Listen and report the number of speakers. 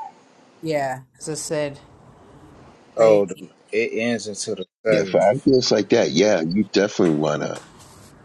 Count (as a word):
three